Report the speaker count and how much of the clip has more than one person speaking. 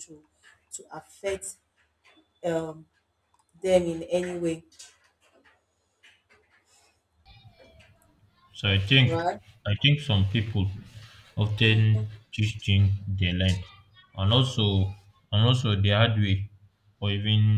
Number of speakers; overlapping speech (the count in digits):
2, about 1%